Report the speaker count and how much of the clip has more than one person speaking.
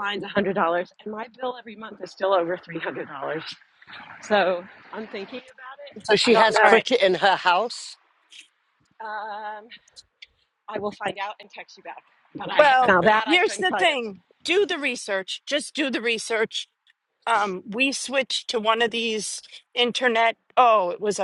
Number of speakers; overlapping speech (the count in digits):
3, about 9%